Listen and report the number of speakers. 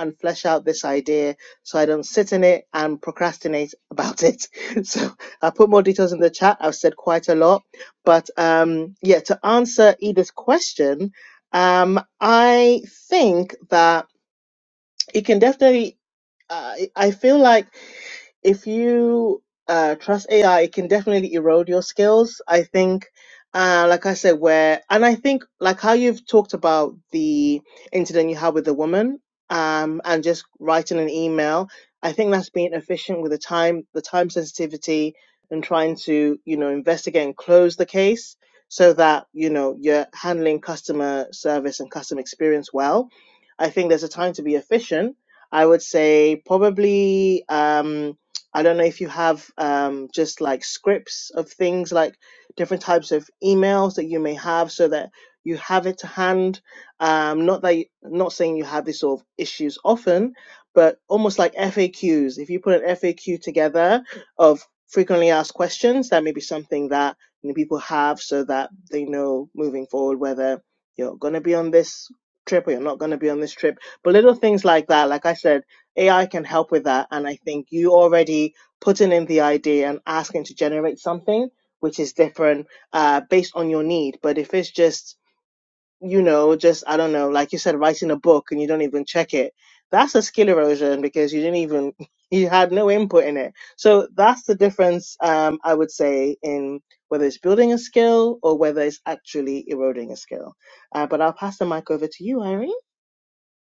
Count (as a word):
one